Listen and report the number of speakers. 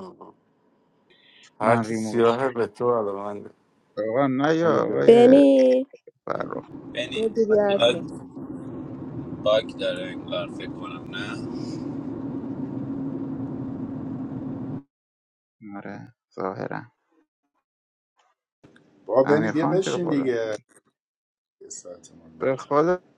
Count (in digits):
5